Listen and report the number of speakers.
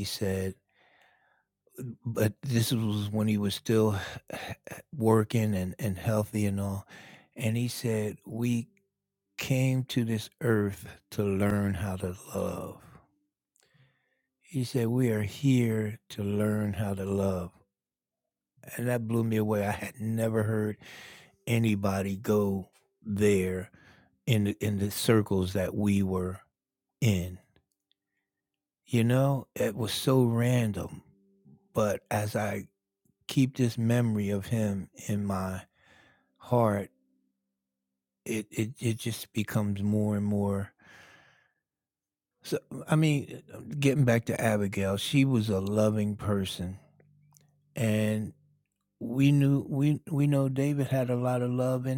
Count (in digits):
1